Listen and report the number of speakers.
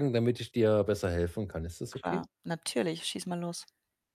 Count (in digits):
2